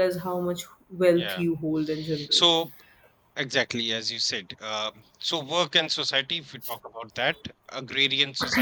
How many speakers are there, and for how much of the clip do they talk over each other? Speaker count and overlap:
2, about 6%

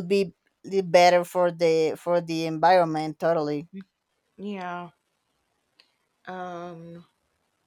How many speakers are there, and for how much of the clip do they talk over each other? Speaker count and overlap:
2, no overlap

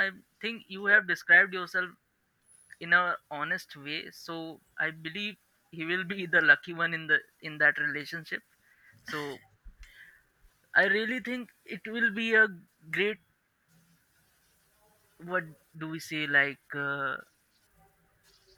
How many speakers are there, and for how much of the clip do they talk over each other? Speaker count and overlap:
1, no overlap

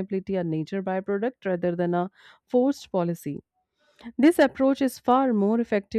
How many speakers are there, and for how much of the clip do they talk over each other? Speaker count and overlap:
1, no overlap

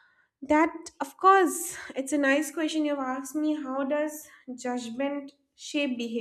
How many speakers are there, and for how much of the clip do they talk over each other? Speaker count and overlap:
1, no overlap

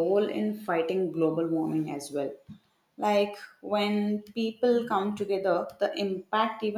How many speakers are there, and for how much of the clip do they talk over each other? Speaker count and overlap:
1, no overlap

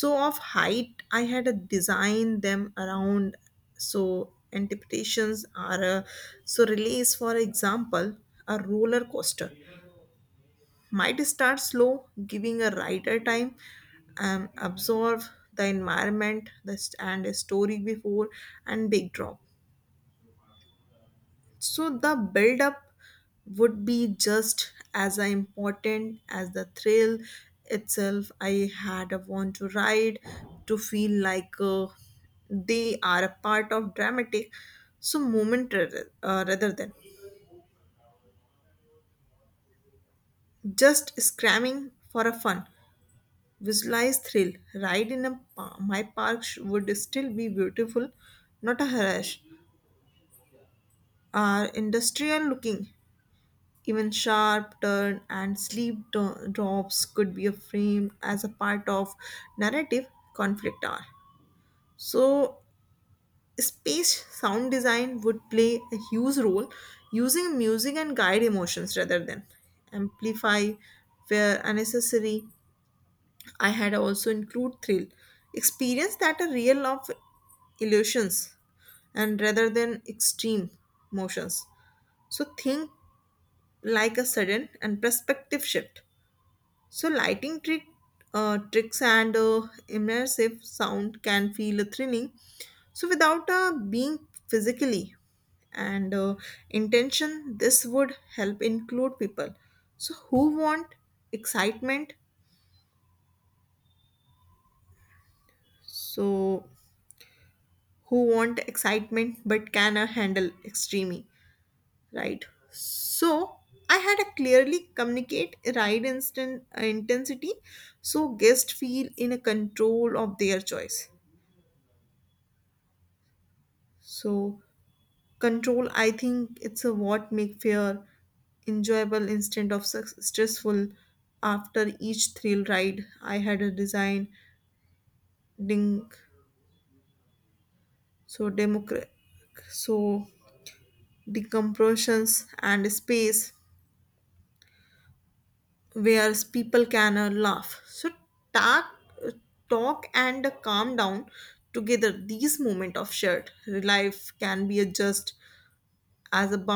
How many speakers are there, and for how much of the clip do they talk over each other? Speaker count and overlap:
1, no overlap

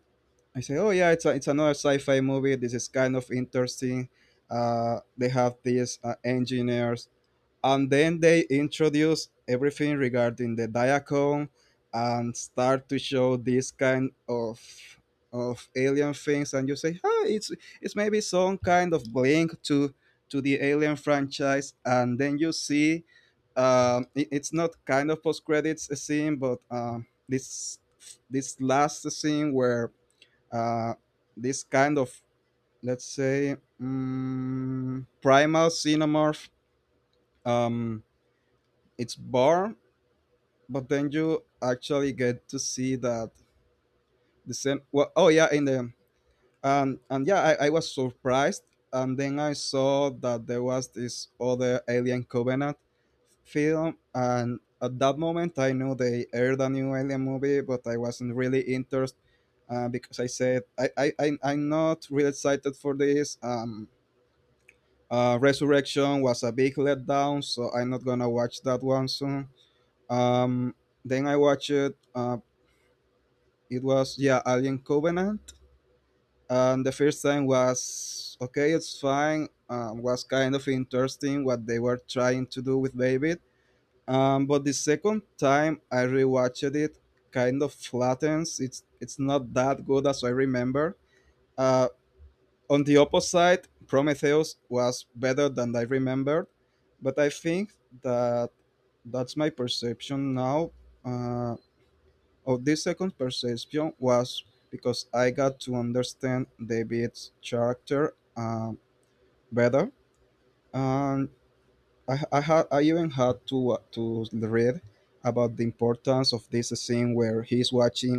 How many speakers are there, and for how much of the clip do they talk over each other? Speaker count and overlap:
1, no overlap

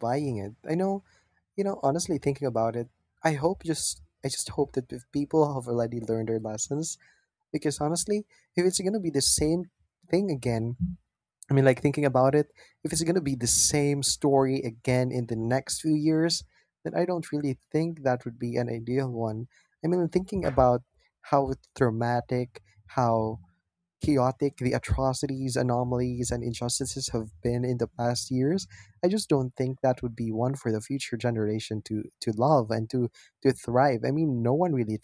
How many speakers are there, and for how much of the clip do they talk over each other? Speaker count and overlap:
1, no overlap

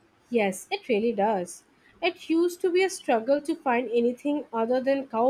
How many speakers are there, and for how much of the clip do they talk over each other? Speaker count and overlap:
1, no overlap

